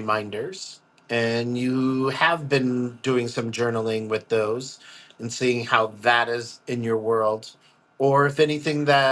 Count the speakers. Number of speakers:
one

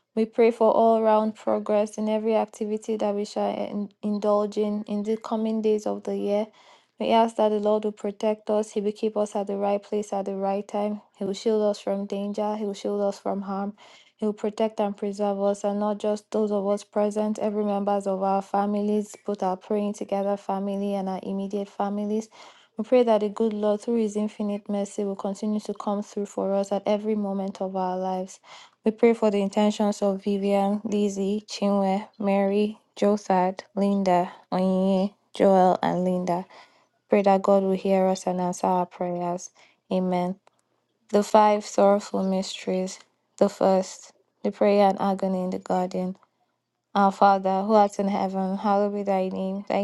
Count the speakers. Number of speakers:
one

